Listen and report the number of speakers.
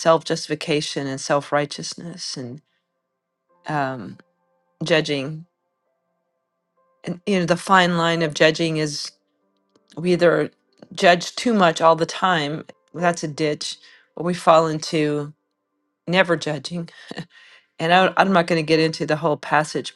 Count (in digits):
1